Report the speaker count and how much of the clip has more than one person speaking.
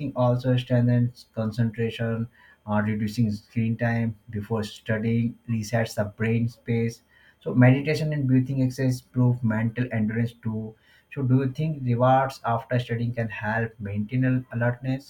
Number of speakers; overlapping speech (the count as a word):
one, no overlap